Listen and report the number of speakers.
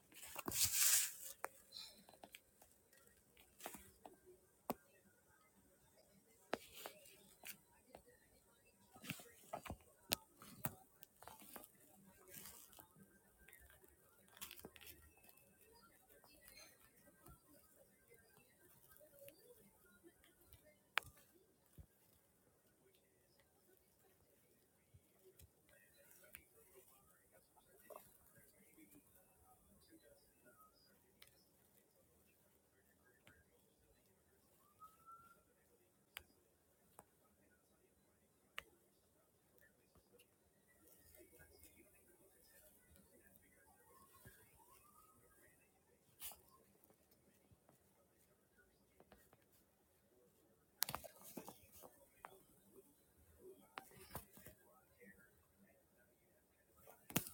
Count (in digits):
0